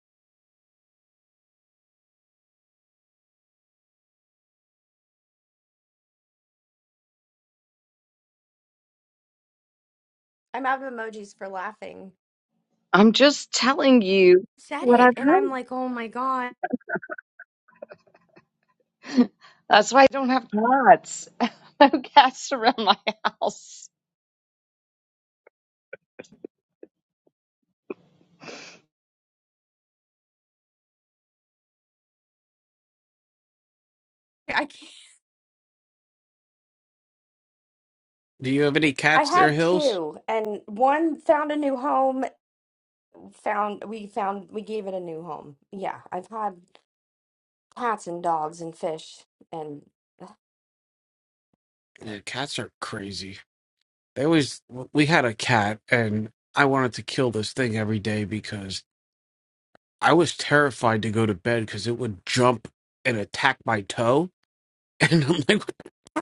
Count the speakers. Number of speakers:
three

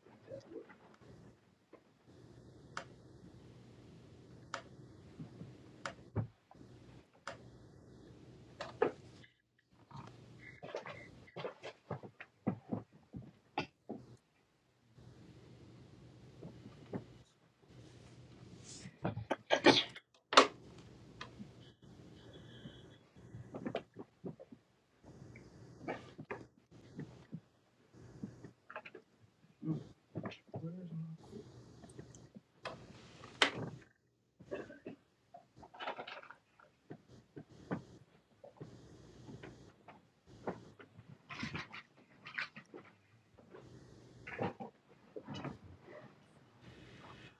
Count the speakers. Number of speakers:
zero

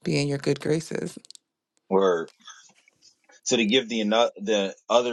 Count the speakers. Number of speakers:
two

